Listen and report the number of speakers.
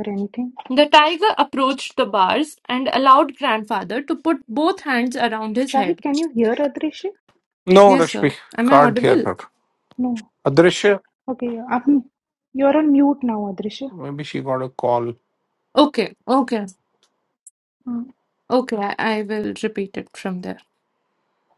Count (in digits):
3